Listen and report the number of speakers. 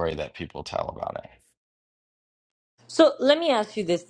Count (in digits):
2